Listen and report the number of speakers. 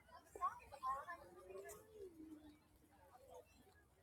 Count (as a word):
zero